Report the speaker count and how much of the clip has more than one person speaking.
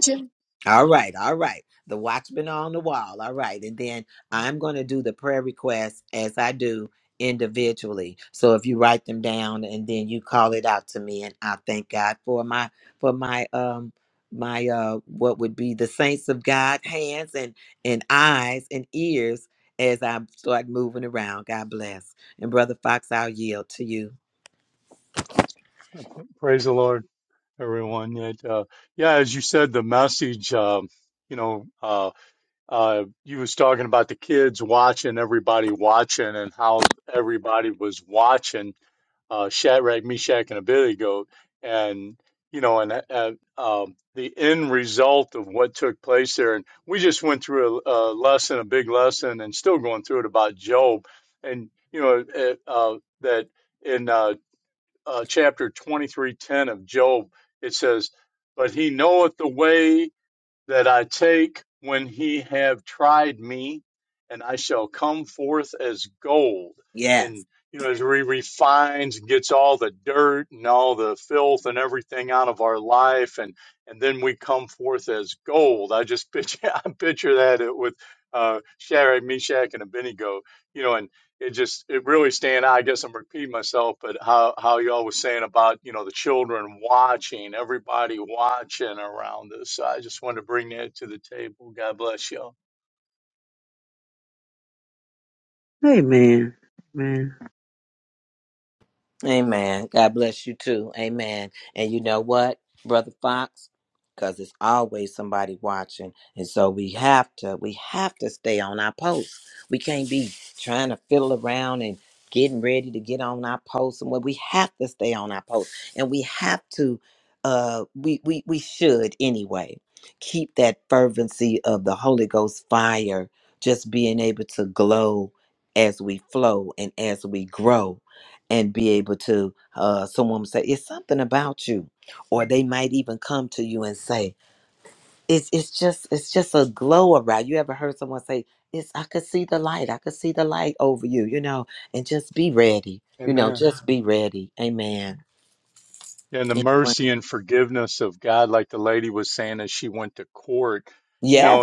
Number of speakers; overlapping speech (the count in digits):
3, about 1%